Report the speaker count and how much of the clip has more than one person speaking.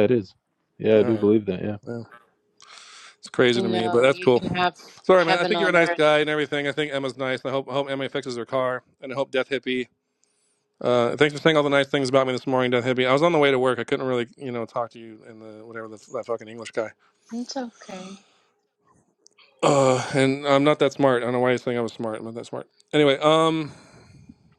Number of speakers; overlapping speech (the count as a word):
three, about 8%